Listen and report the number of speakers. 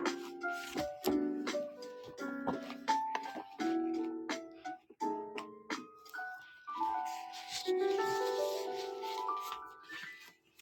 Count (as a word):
zero